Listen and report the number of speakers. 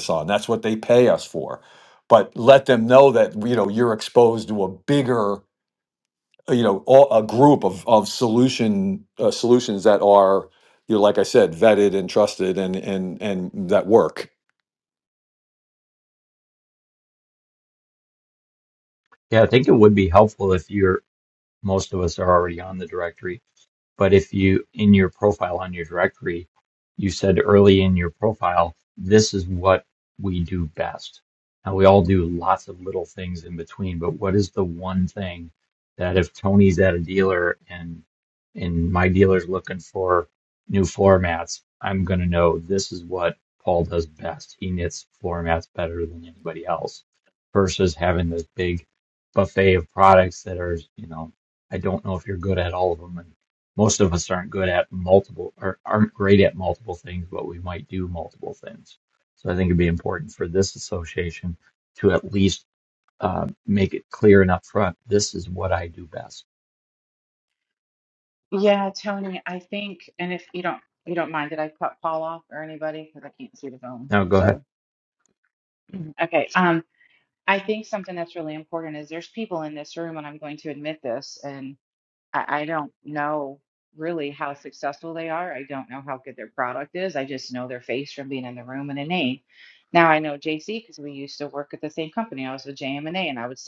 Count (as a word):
three